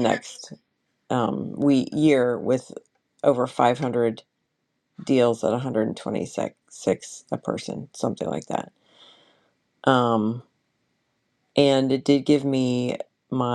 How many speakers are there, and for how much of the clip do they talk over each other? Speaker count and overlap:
1, no overlap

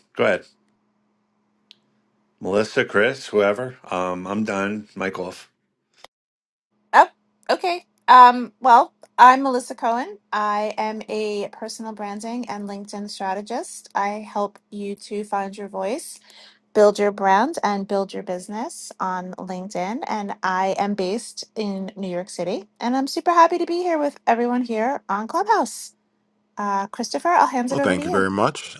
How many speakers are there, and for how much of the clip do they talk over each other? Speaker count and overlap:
3, about 2%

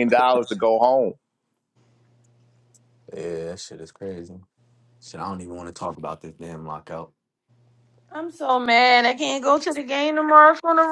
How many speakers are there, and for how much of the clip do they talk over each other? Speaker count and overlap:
3, no overlap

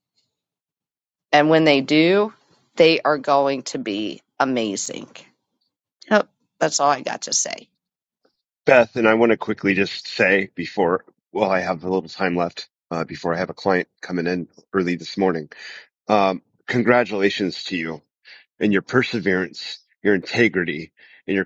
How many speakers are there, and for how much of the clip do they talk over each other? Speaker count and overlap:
2, no overlap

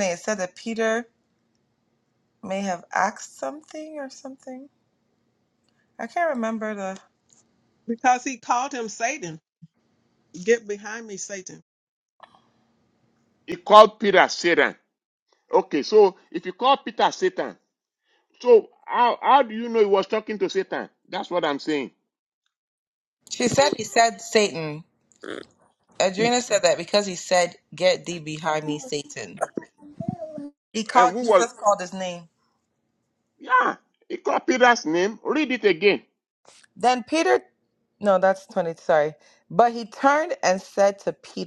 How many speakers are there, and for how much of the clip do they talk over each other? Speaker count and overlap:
3, about 1%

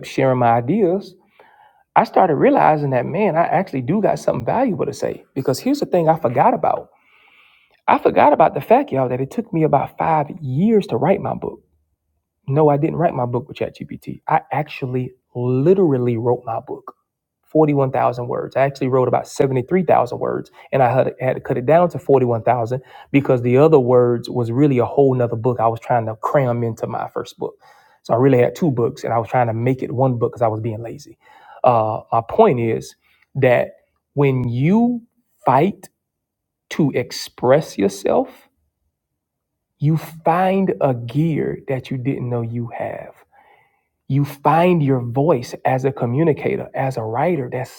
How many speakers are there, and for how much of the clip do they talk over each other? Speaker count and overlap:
1, no overlap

